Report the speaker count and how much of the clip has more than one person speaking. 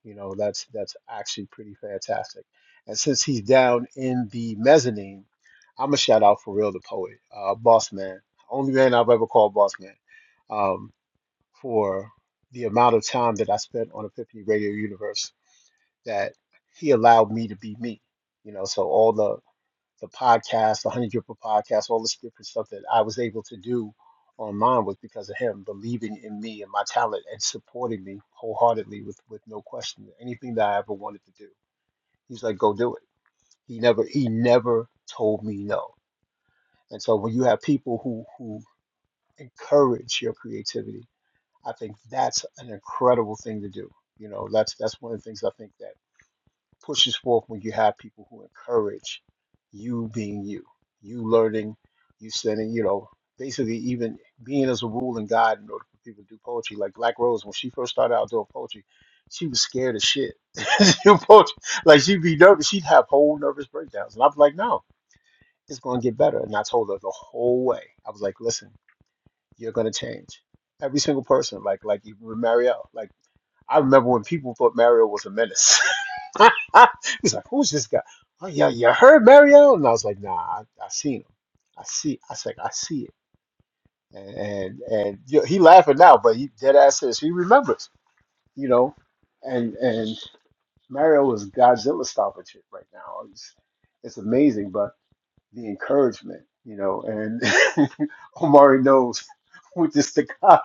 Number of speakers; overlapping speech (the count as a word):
one, no overlap